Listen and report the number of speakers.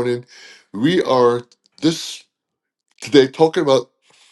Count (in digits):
1